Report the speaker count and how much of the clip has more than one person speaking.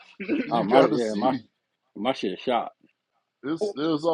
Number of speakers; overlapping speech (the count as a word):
two, about 21%